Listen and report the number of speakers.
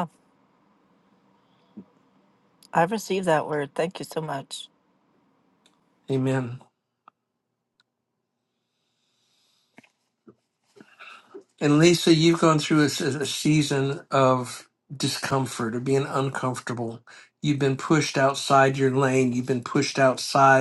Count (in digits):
2